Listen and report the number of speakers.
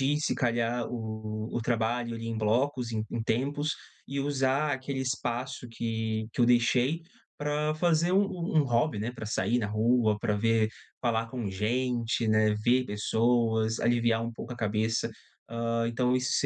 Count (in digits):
1